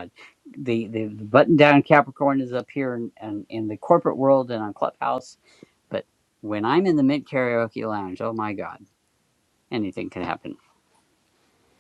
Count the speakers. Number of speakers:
1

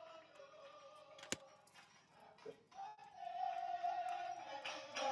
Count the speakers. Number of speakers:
0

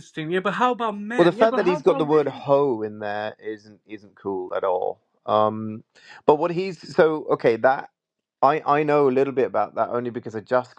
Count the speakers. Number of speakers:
2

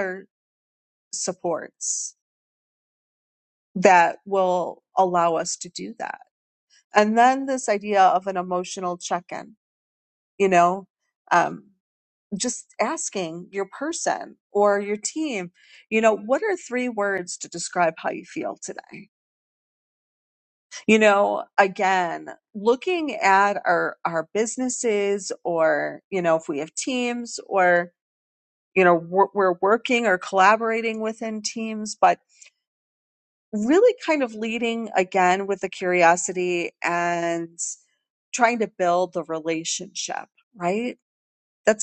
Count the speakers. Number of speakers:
1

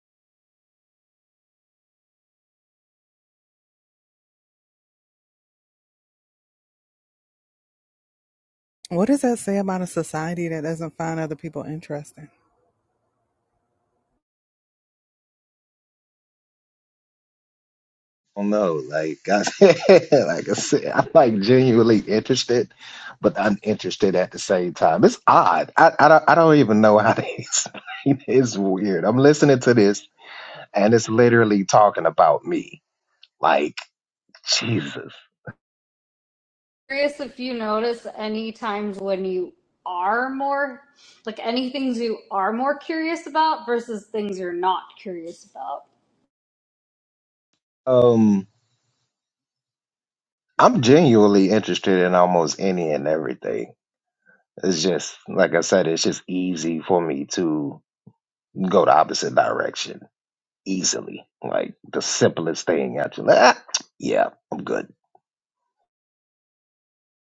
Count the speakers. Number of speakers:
3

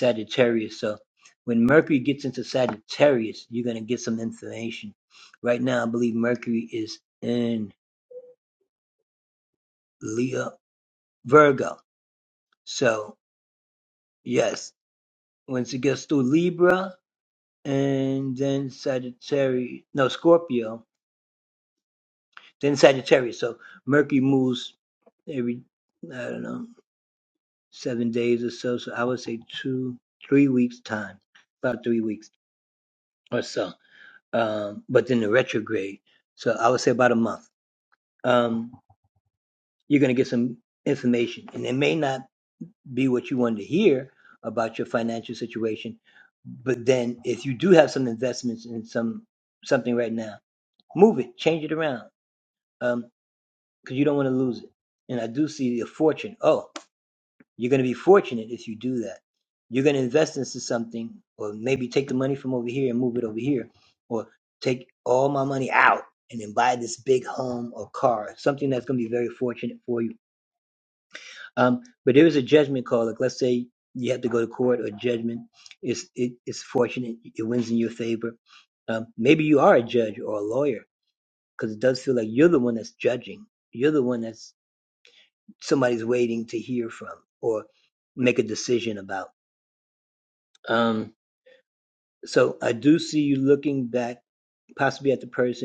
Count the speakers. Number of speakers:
1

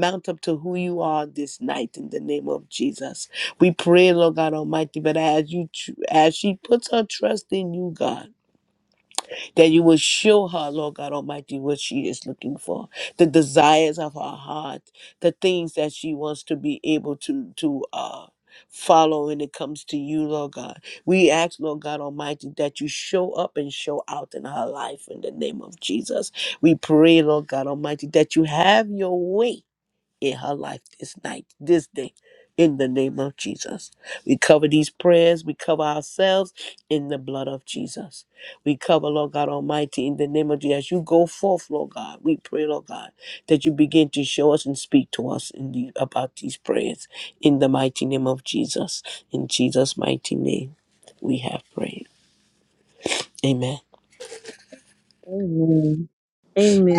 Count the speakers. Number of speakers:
2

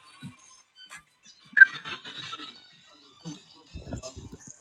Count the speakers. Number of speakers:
0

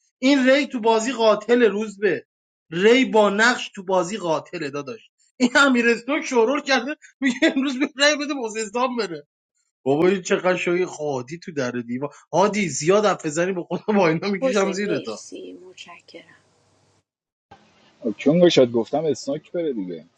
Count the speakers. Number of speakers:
3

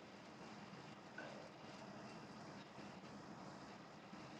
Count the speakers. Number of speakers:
0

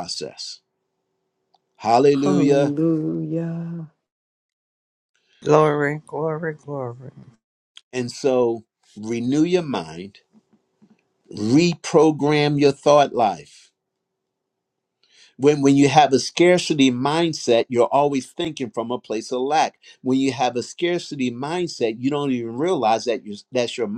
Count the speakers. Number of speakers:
3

